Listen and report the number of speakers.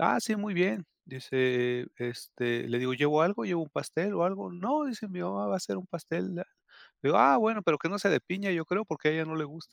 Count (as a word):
one